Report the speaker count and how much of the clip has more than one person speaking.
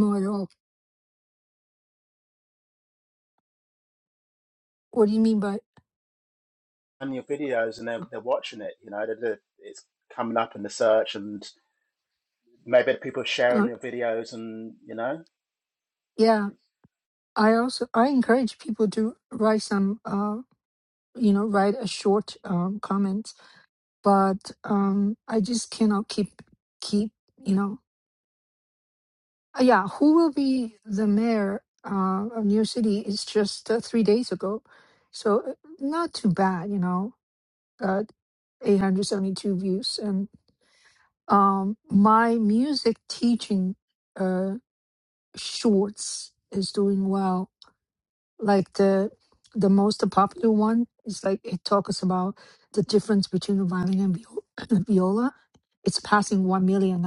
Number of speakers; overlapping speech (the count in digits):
2, under 1%